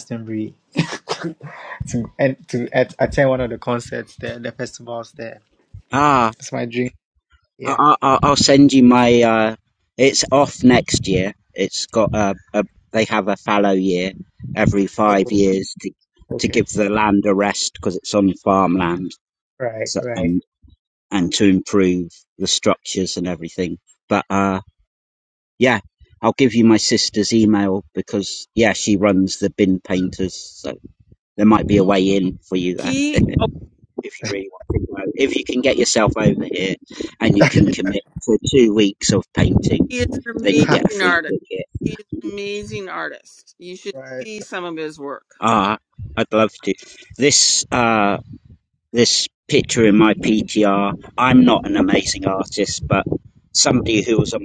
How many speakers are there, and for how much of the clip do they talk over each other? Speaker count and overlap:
3, about 6%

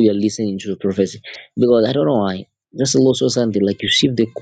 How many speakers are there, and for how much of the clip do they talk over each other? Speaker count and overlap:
1, no overlap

